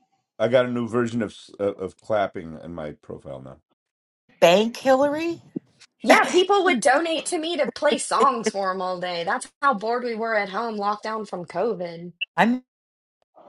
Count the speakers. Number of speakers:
three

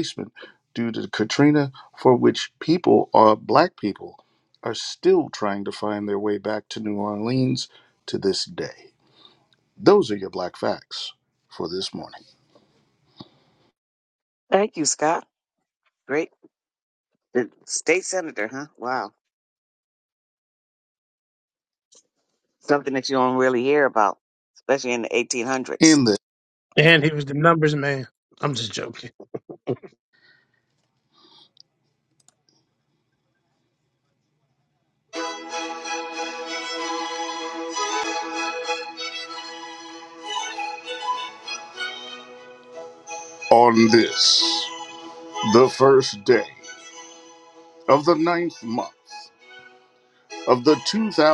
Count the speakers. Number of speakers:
three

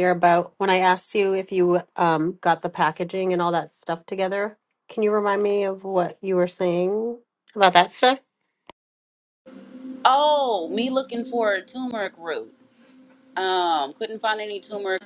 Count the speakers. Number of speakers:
two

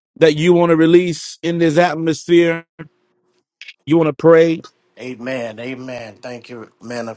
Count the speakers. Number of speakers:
two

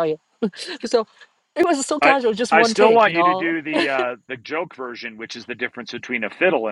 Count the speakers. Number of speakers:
two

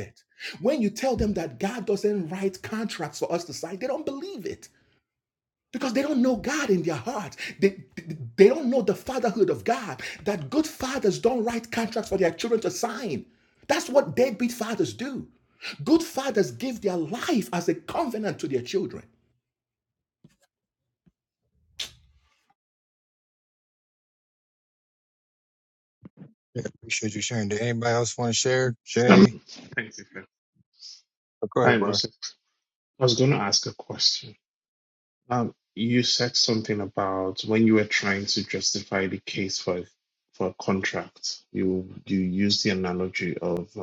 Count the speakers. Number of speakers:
three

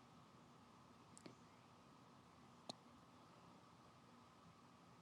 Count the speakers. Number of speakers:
zero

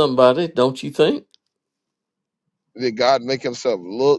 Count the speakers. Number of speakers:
two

